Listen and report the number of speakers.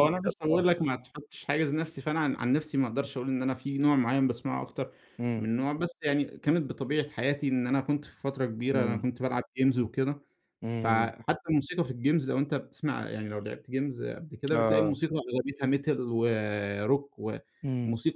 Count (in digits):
2